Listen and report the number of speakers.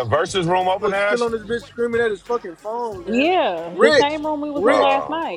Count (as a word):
three